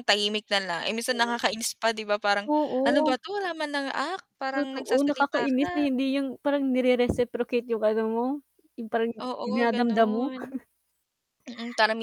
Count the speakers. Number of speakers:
2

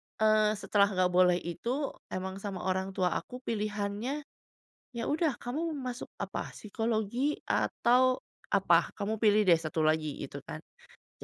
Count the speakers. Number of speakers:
1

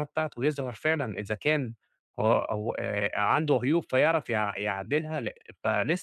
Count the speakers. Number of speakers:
1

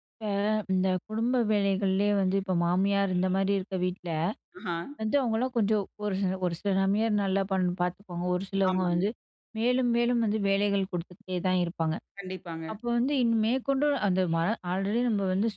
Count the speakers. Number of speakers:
2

